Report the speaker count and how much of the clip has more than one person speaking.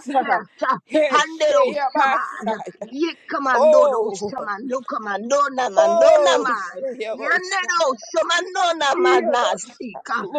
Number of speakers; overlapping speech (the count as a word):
two, about 43%